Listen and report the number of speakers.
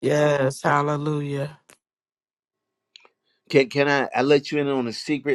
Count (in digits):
2